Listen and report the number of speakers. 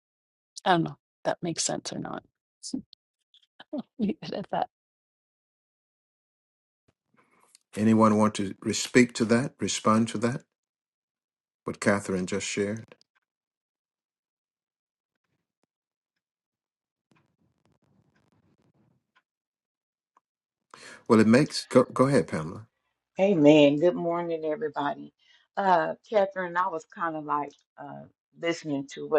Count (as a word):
three